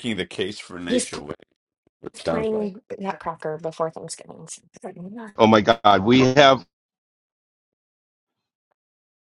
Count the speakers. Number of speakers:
three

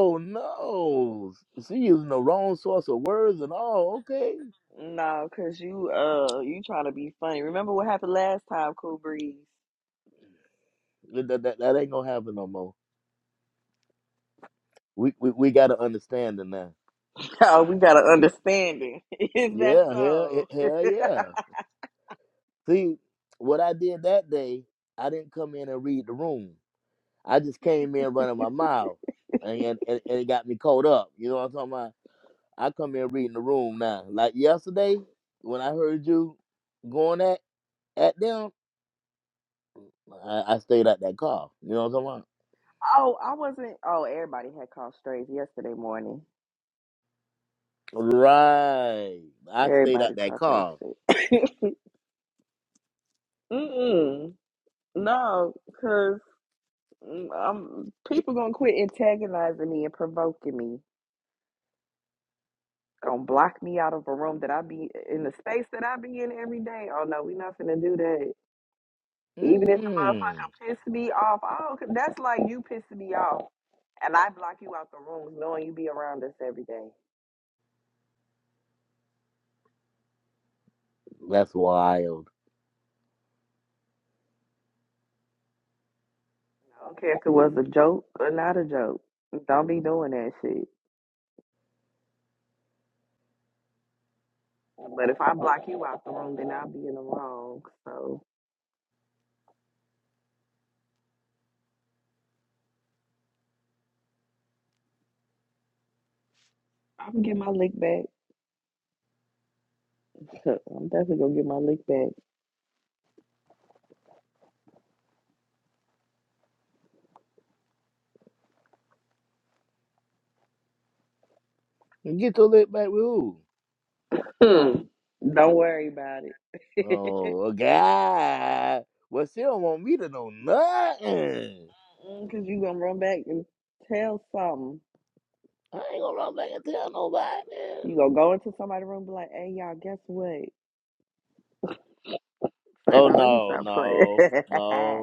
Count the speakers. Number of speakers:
two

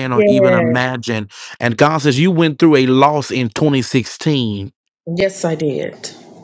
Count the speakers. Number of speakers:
two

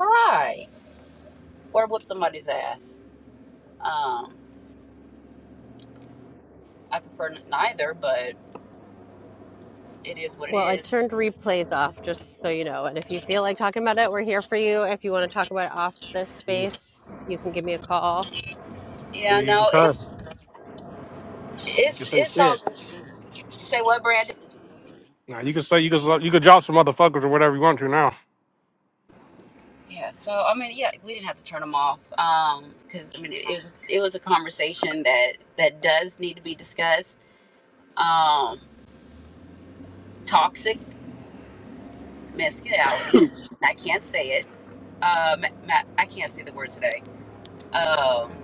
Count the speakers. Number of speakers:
three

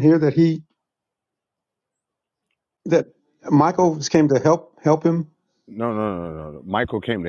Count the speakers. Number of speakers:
two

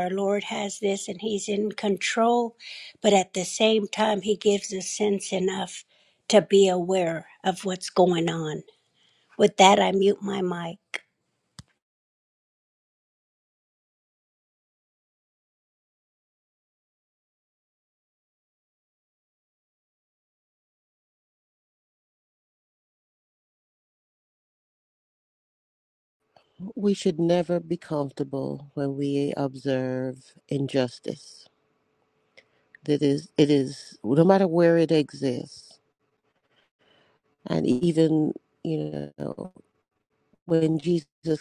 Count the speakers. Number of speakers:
two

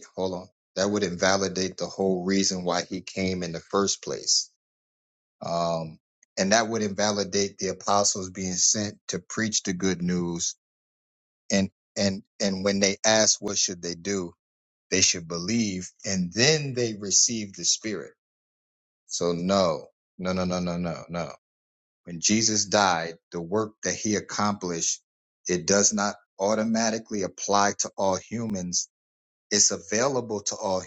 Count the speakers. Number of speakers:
one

